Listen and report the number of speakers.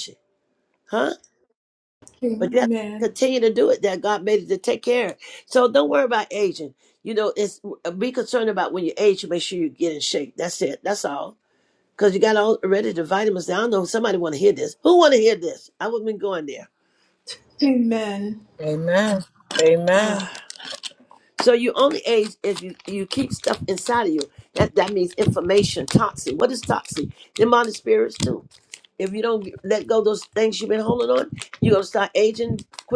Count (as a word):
three